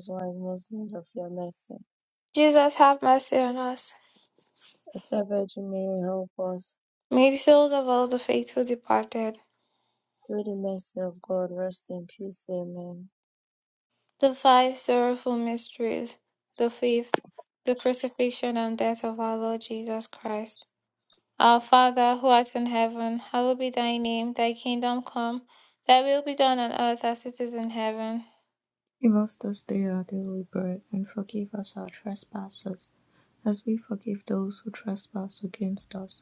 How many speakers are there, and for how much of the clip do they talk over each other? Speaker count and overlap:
3, no overlap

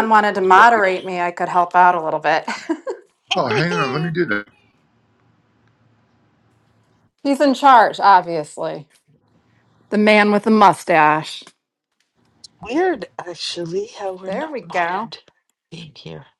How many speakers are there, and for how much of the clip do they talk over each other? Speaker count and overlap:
3, about 8%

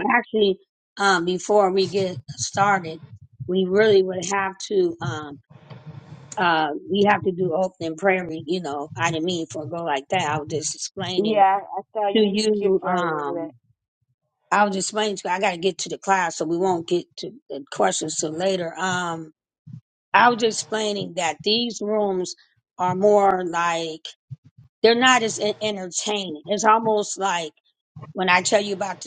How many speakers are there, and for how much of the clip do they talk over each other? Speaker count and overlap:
2, about 6%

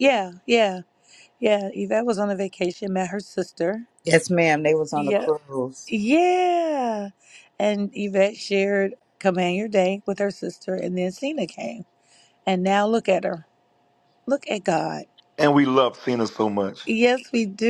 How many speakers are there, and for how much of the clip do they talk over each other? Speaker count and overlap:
3, about 2%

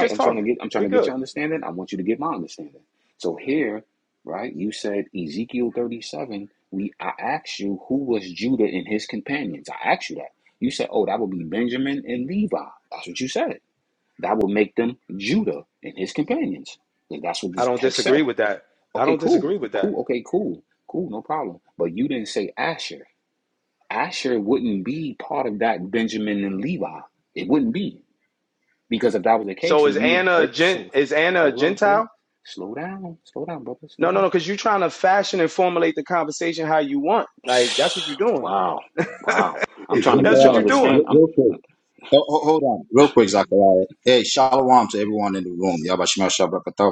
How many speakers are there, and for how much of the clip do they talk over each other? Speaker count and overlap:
3, about 13%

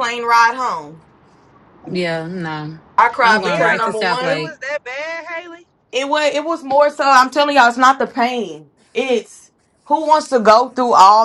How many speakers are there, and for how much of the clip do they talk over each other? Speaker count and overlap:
3, about 12%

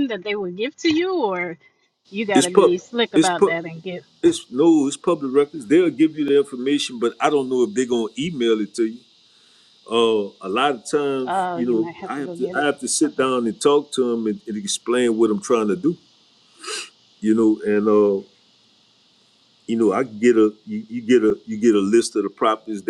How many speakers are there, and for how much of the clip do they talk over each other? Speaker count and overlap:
2, about 10%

